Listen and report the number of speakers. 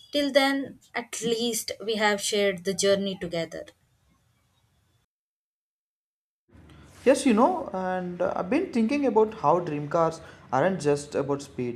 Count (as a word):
two